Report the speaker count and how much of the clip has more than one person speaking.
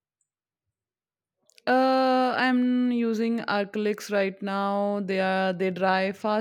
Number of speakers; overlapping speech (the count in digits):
1, no overlap